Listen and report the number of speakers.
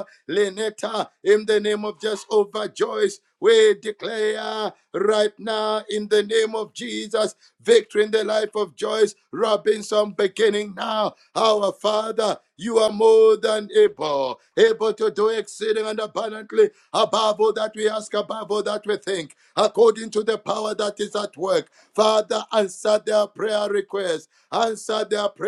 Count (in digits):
1